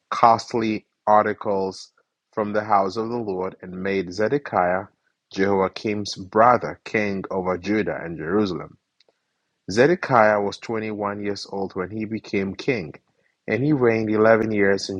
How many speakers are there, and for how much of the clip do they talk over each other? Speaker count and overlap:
one, no overlap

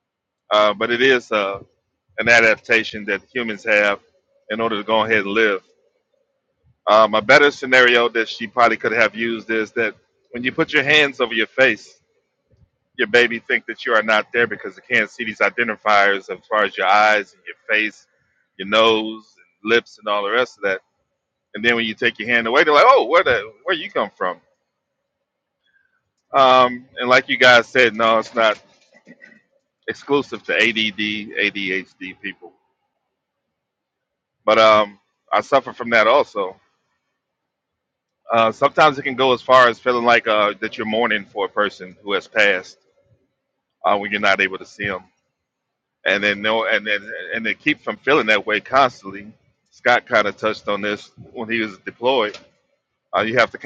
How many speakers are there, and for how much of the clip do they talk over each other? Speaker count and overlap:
one, no overlap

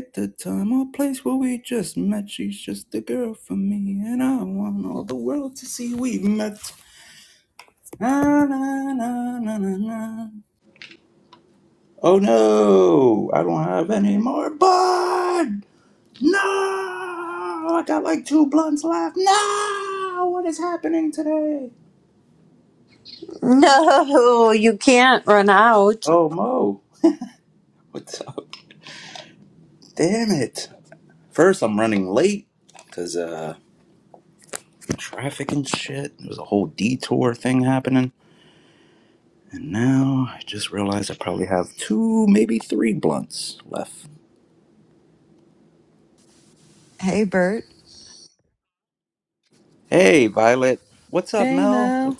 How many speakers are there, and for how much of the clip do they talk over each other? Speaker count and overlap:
three, about 2%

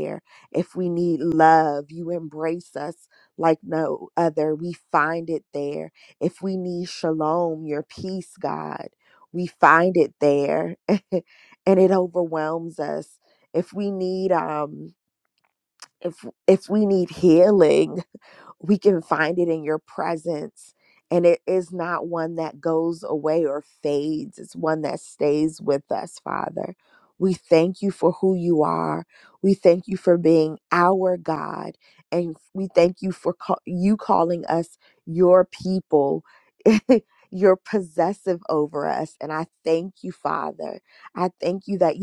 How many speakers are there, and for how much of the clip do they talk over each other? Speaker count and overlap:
one, no overlap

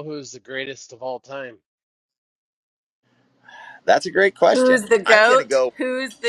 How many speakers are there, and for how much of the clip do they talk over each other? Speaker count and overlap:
three, about 19%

